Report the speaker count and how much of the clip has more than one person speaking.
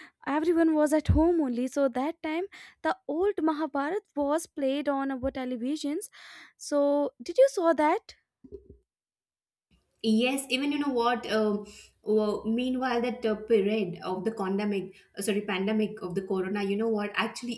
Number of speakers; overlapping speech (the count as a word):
two, no overlap